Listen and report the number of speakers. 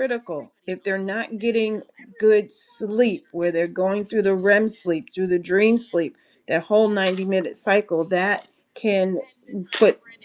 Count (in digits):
1